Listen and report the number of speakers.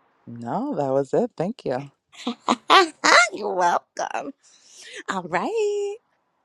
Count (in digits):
2